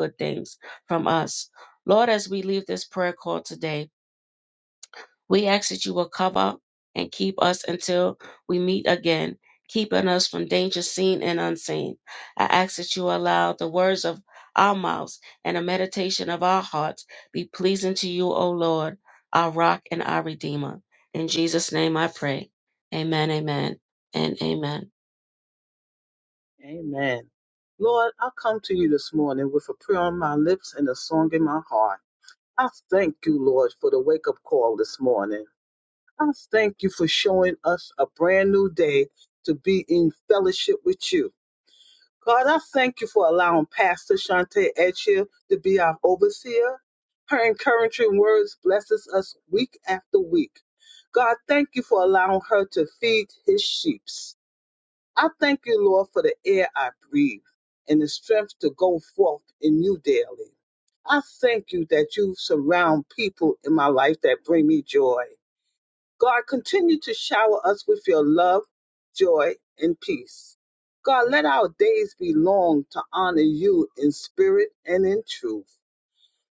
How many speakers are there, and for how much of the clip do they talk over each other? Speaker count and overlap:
2, no overlap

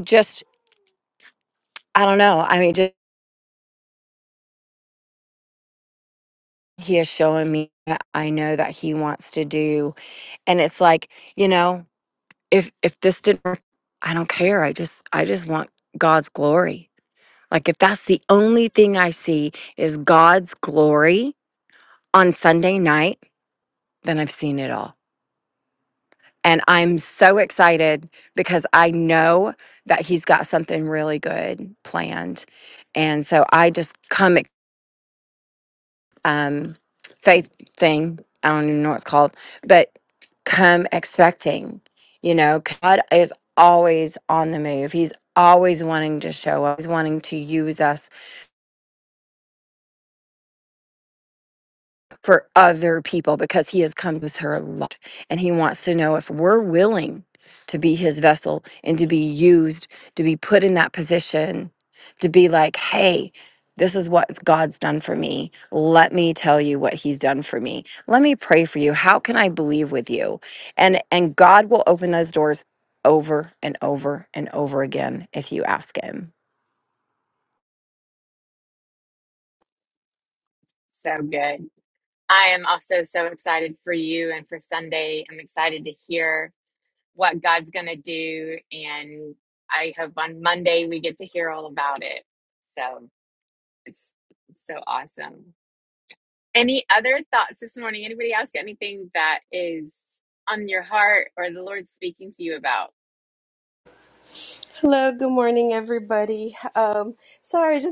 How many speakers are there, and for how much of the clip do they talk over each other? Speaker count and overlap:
3, no overlap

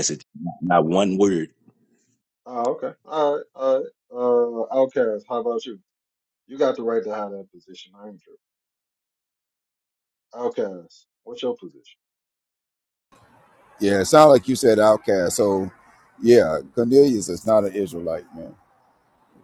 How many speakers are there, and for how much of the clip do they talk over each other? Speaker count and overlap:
3, no overlap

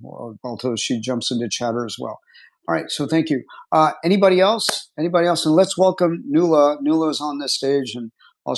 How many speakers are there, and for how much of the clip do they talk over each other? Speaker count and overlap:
1, no overlap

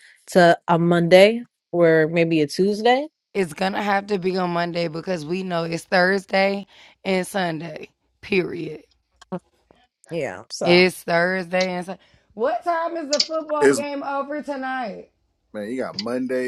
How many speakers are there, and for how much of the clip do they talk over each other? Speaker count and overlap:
3, about 3%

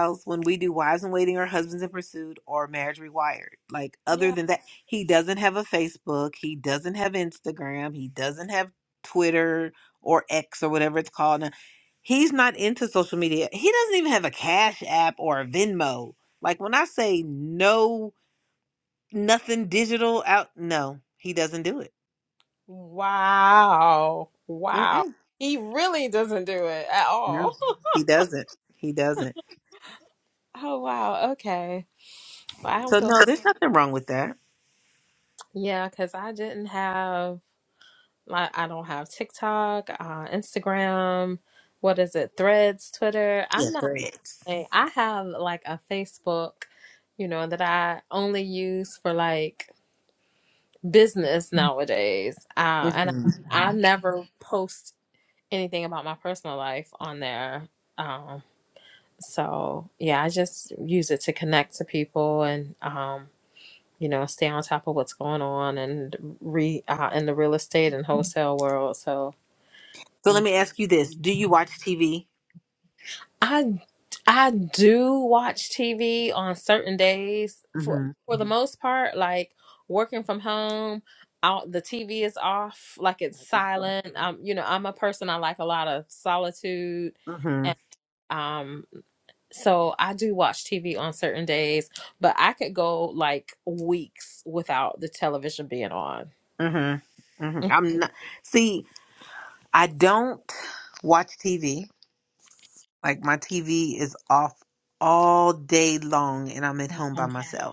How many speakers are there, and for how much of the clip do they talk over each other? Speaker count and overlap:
2, about 2%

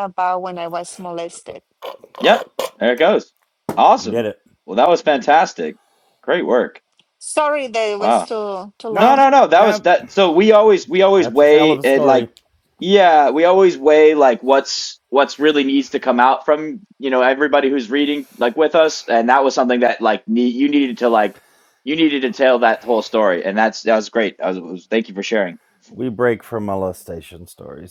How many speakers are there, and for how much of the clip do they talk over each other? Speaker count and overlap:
3, about 8%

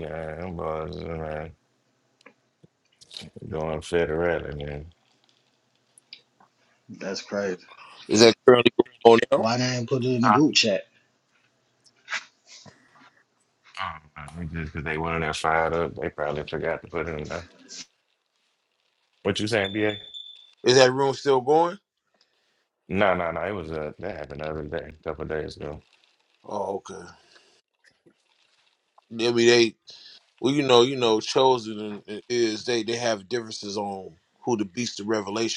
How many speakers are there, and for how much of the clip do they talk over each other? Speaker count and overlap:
3, about 1%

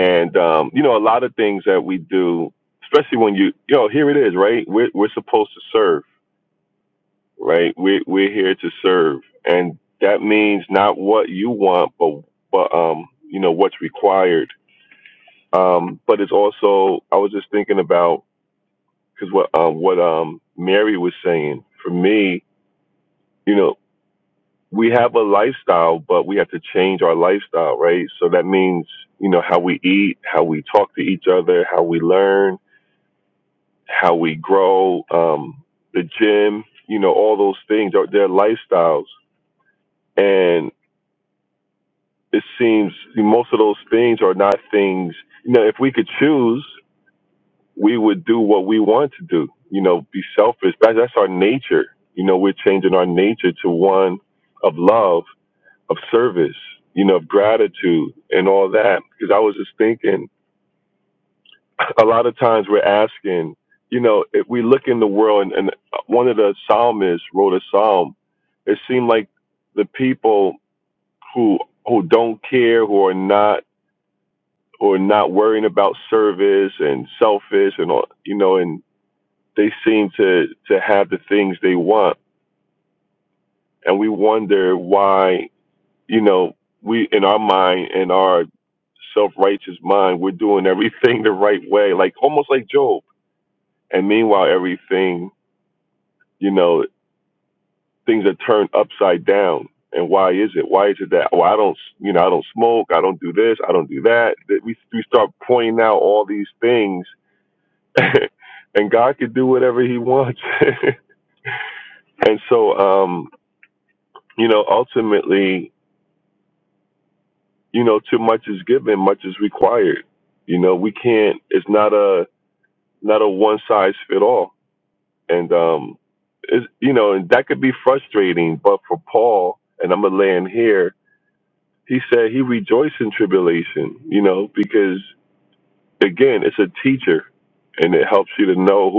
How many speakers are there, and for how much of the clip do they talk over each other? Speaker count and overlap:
1, no overlap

